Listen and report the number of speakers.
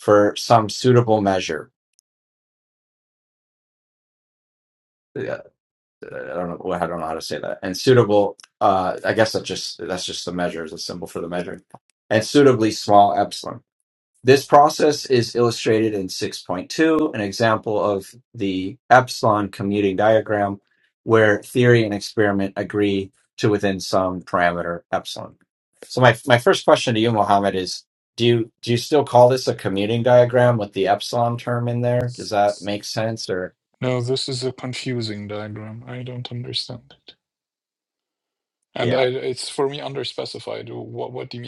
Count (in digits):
2